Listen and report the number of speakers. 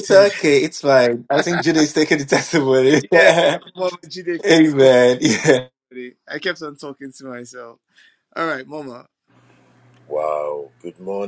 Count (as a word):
three